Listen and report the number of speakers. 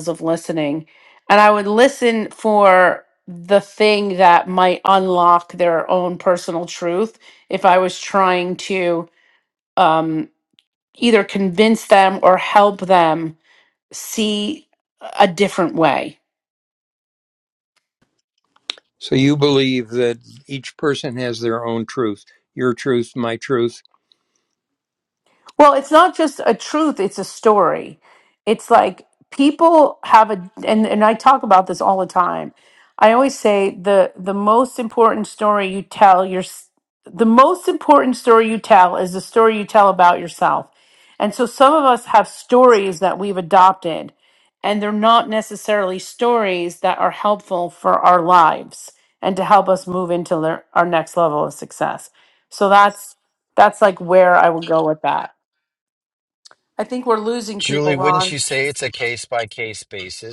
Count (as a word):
three